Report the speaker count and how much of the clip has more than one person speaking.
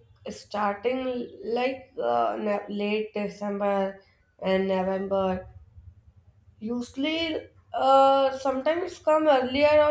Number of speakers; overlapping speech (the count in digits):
1, no overlap